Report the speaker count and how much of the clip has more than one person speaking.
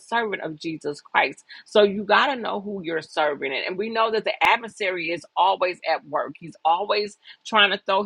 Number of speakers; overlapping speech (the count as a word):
one, no overlap